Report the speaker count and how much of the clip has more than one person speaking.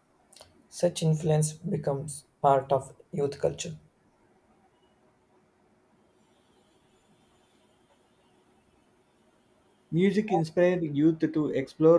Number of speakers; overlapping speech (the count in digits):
2, no overlap